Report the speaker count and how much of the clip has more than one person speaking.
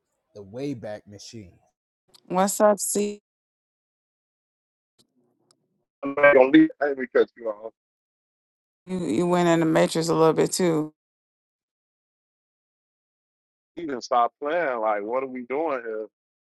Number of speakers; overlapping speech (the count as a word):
three, no overlap